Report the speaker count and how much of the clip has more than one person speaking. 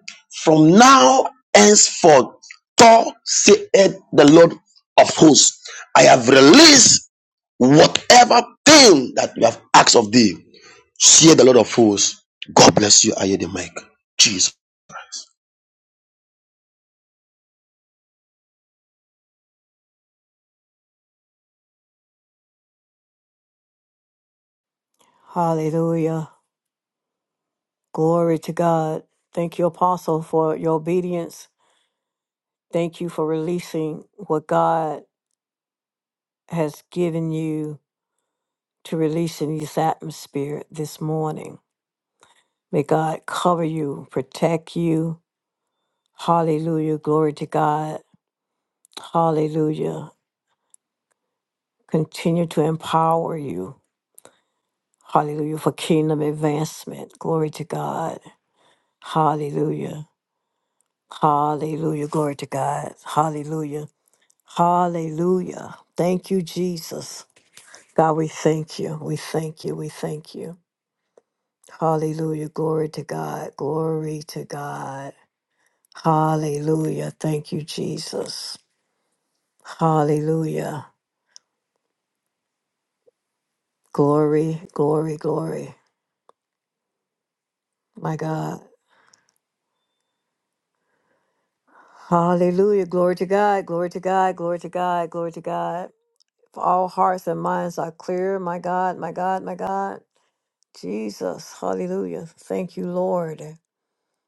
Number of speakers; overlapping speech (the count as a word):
two, no overlap